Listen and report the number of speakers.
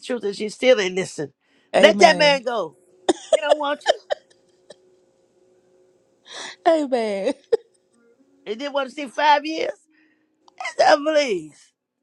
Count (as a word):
two